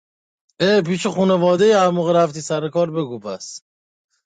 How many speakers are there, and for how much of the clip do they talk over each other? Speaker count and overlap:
one, no overlap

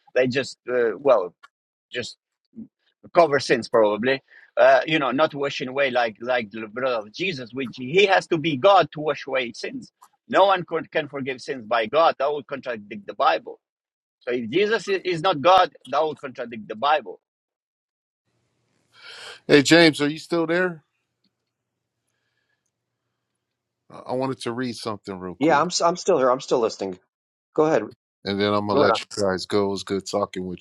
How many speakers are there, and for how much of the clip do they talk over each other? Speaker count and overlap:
three, about 2%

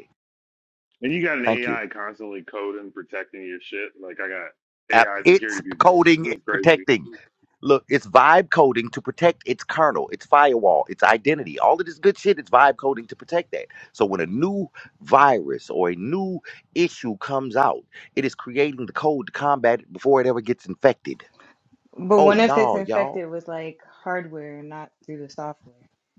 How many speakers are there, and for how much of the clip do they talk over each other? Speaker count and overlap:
three, about 13%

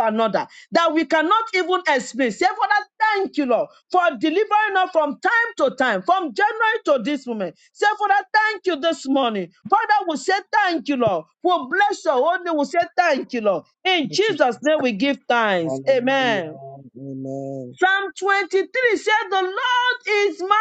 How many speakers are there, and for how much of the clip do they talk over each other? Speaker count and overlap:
two, about 6%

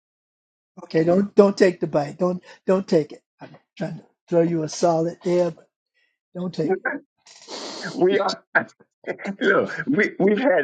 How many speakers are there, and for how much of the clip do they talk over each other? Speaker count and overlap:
two, no overlap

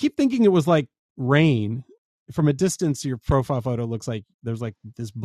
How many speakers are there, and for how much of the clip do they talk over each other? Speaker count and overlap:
one, no overlap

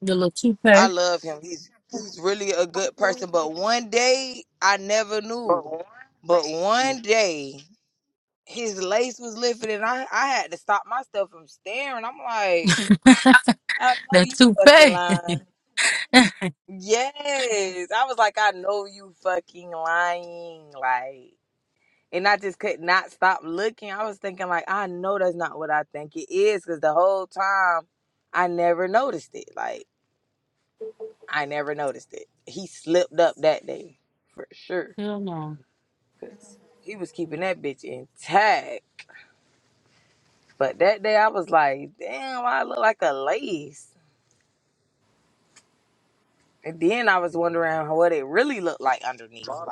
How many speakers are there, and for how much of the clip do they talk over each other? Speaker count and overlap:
two, about 2%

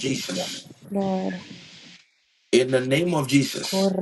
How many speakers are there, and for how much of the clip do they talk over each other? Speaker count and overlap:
two, about 10%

